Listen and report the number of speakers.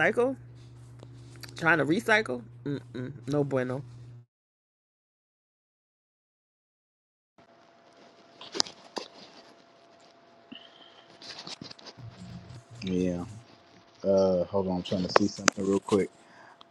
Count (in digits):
2